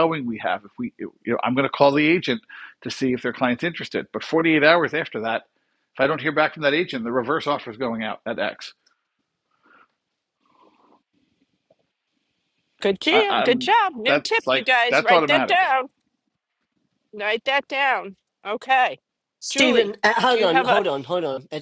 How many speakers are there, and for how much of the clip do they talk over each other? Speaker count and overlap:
3, about 14%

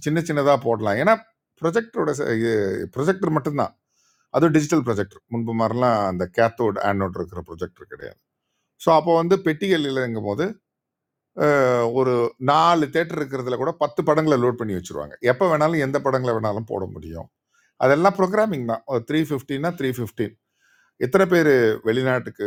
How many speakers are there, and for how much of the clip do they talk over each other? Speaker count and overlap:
1, no overlap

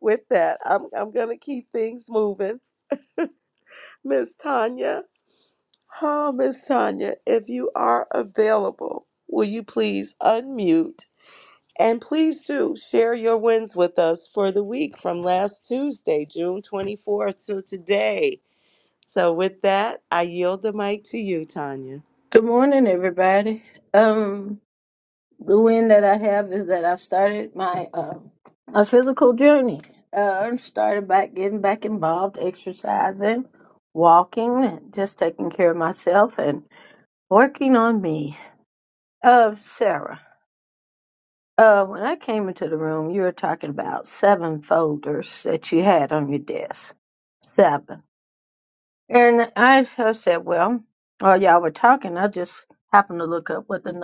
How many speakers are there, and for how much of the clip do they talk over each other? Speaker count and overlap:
2, no overlap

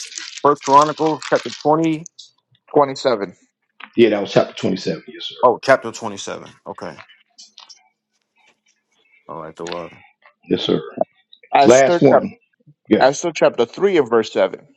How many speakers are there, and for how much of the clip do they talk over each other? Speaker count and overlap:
3, about 4%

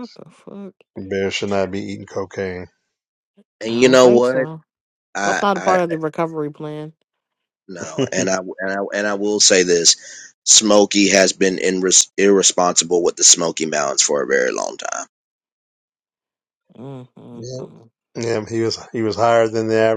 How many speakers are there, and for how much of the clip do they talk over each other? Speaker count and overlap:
3, about 8%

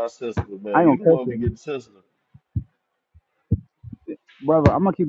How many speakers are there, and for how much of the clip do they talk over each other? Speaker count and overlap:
2, about 14%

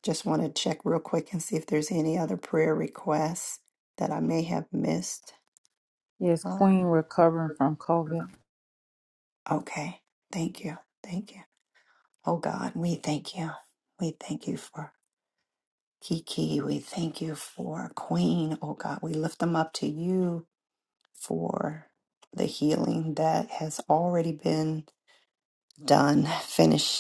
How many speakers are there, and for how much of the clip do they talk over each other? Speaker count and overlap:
2, about 1%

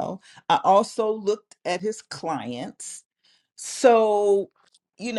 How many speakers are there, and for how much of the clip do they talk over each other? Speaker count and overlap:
1, no overlap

